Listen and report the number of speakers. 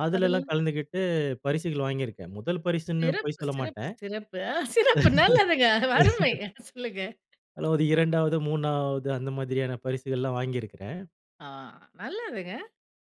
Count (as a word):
two